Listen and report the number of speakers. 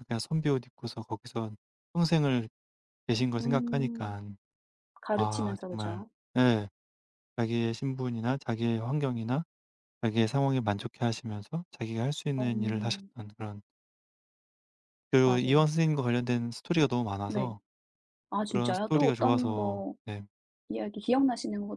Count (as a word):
two